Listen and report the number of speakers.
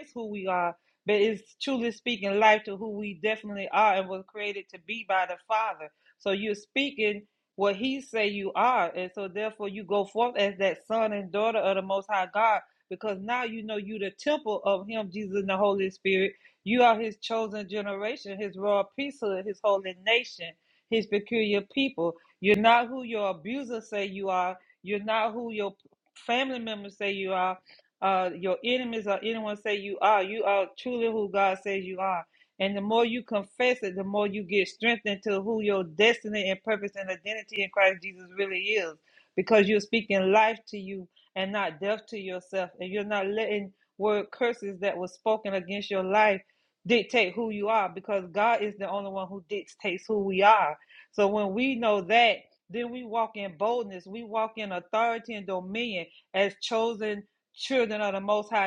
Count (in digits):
1